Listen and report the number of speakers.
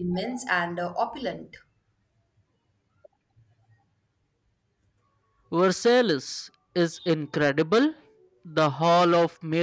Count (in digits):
2